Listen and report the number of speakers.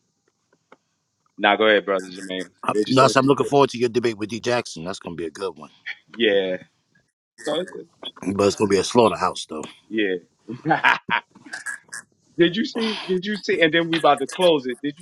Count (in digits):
2